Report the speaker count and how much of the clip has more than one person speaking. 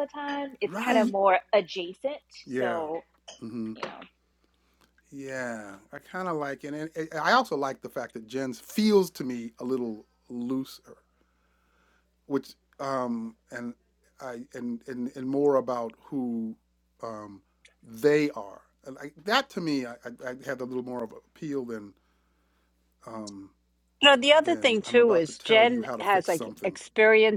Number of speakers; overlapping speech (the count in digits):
3, about 11%